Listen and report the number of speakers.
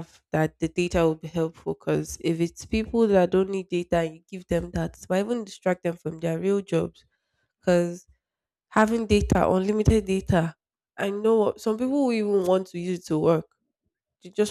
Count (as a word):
one